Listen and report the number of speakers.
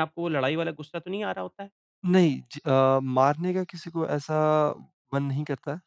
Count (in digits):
2